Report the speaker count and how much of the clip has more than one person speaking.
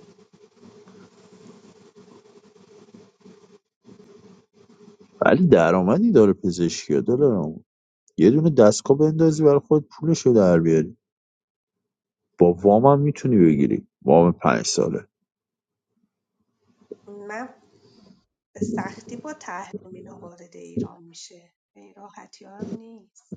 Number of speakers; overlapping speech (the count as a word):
two, no overlap